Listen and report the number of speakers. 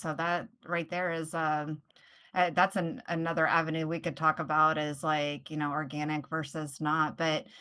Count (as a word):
one